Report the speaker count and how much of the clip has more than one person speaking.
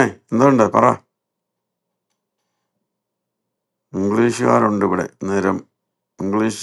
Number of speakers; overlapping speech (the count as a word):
one, no overlap